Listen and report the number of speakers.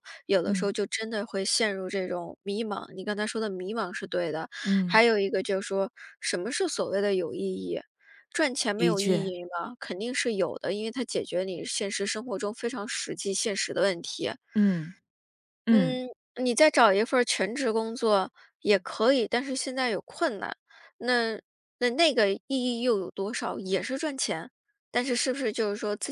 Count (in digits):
2